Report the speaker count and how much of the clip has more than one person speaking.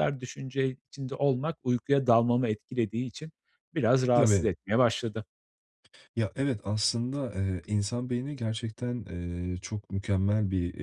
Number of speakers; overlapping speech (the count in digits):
2, about 3%